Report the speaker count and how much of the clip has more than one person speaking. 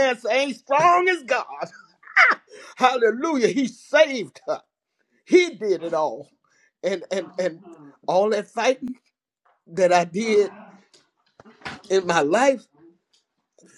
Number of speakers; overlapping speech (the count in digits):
1, no overlap